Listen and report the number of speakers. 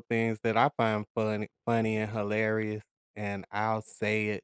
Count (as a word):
one